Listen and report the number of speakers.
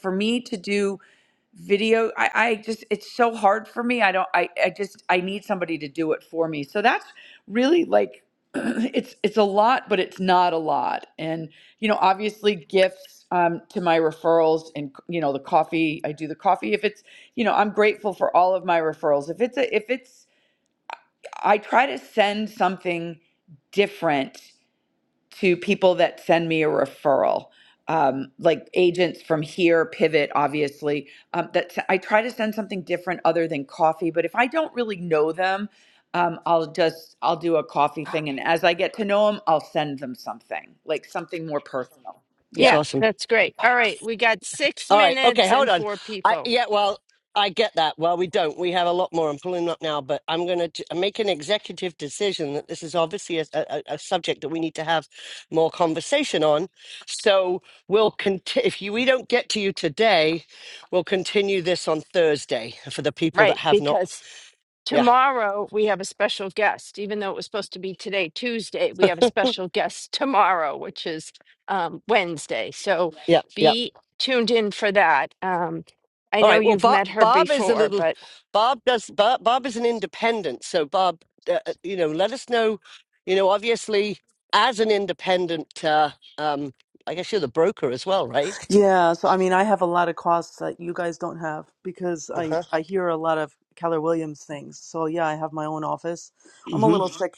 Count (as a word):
four